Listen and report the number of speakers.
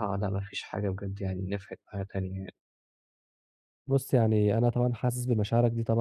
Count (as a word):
two